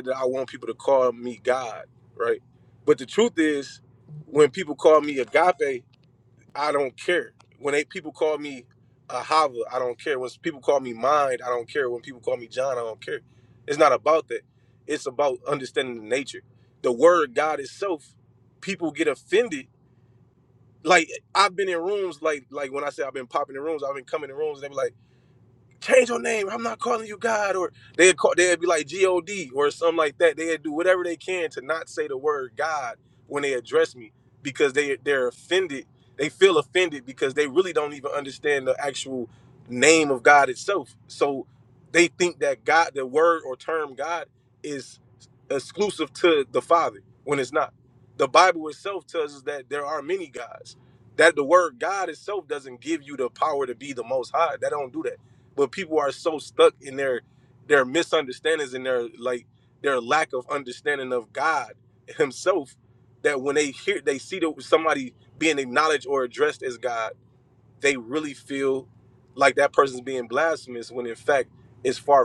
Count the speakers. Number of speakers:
one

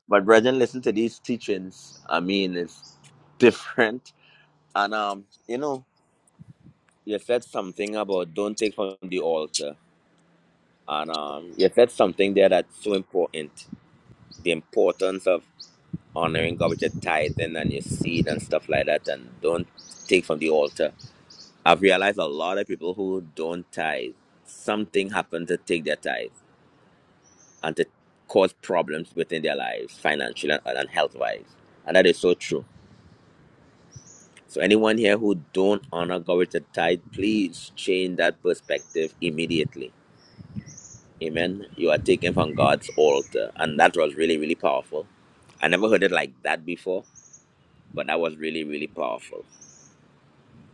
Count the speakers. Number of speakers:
one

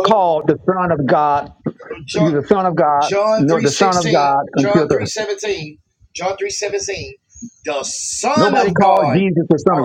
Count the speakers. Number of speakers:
two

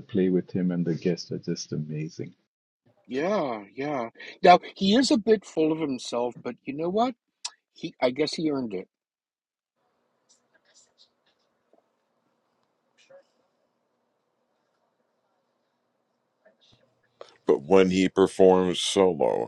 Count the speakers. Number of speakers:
three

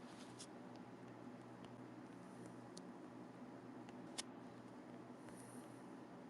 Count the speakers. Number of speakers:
zero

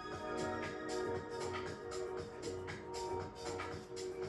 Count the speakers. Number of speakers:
zero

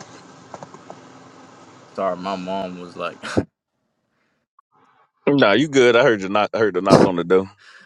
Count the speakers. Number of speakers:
two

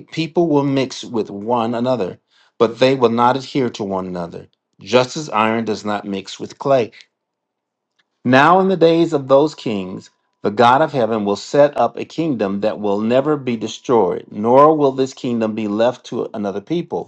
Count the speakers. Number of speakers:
one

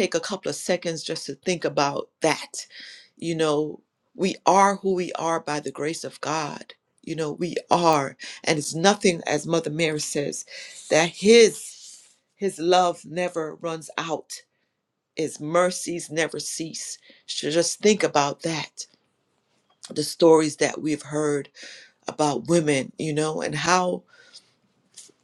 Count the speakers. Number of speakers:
one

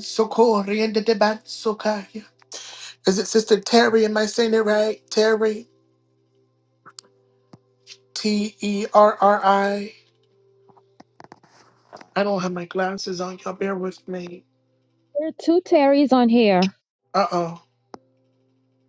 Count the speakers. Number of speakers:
two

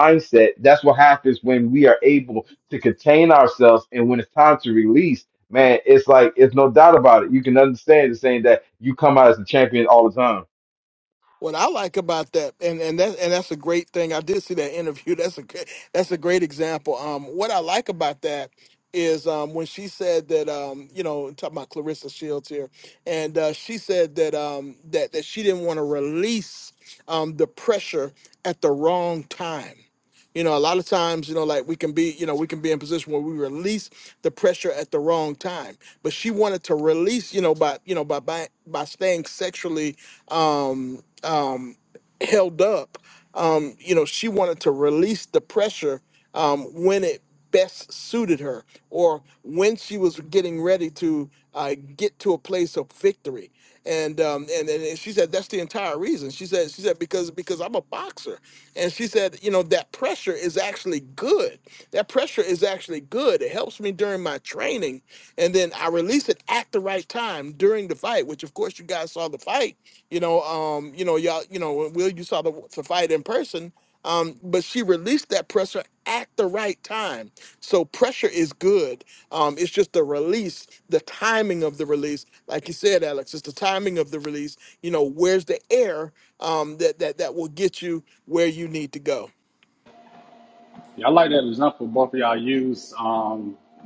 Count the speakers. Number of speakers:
three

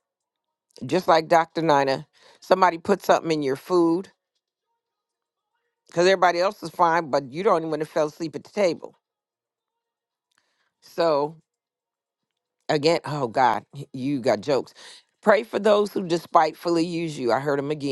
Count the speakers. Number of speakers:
one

